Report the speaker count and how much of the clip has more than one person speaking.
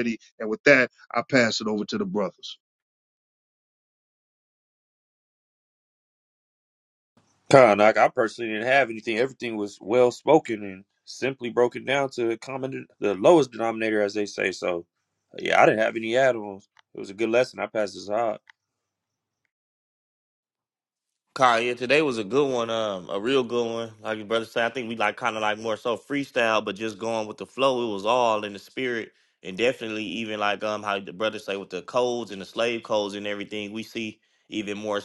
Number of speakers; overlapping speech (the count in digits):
3, no overlap